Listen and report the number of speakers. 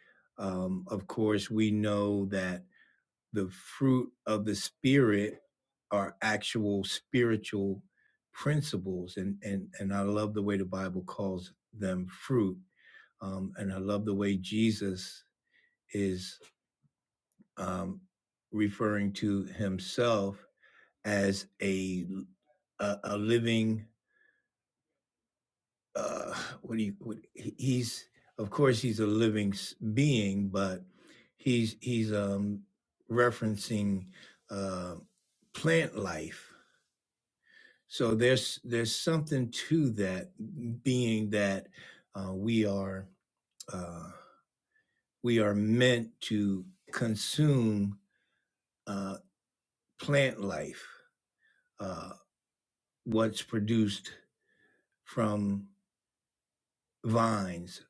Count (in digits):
1